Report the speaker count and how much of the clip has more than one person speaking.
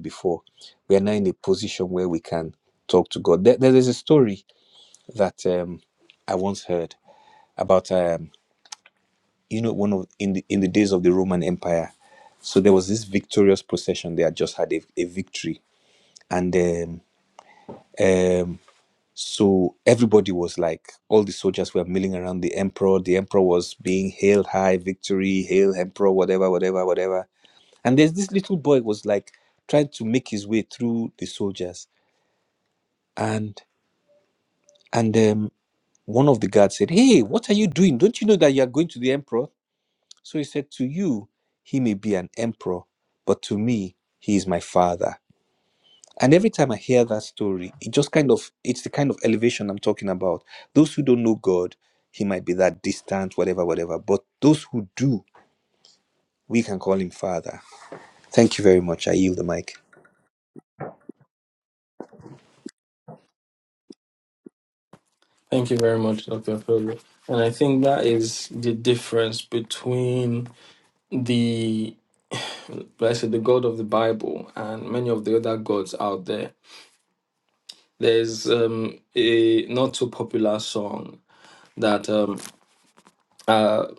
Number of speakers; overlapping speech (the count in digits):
2, no overlap